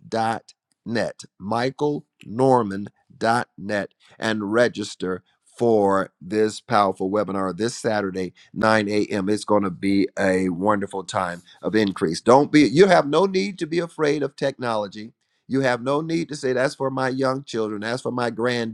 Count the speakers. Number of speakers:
1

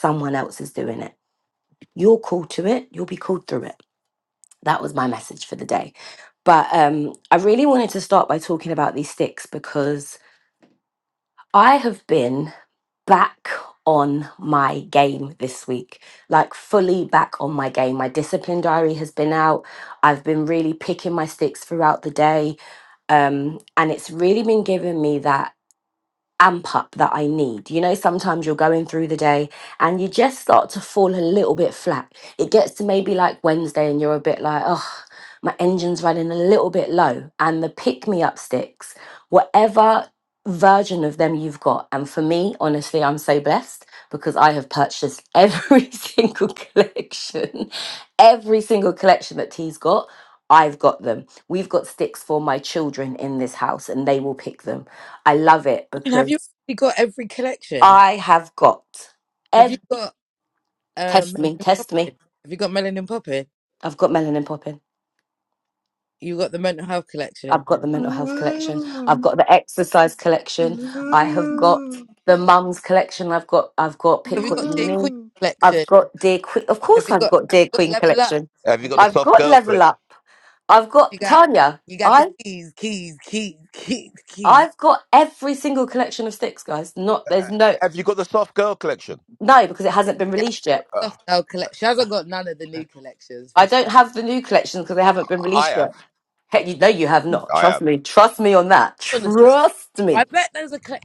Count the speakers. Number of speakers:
3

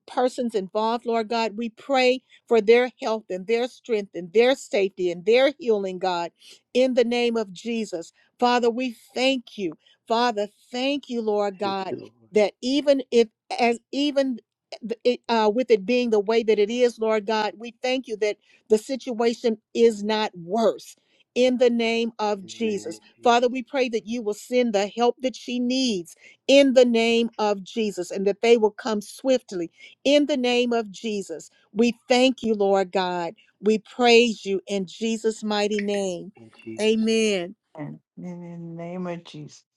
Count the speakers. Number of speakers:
3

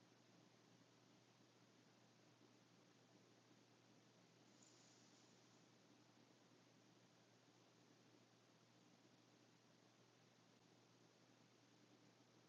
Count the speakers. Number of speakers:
0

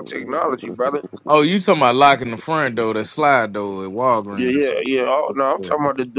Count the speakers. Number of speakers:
2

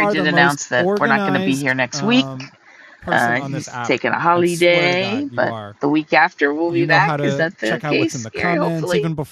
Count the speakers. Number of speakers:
2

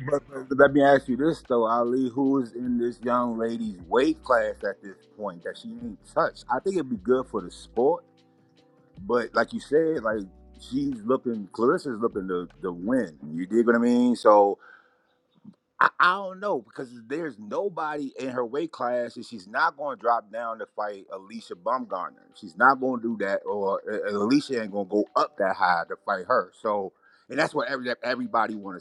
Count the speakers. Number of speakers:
1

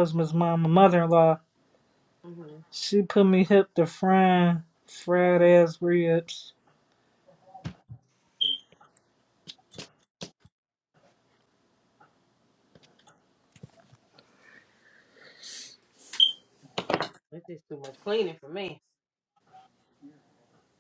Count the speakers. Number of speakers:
2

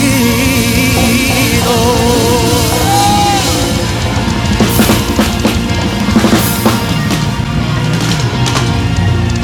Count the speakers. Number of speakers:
1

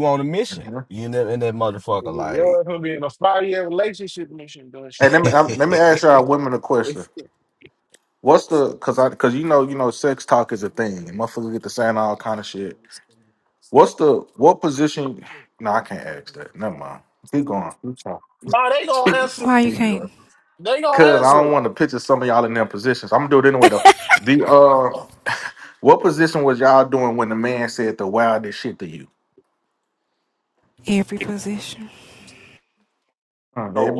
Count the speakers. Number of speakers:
4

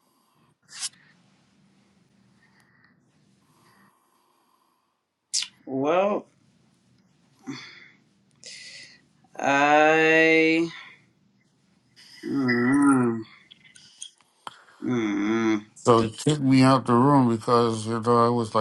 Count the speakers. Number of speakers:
2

